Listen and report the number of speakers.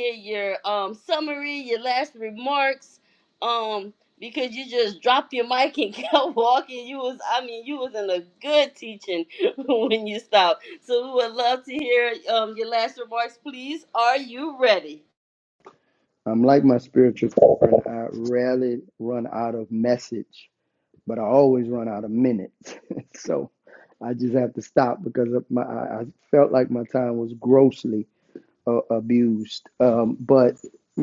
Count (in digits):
2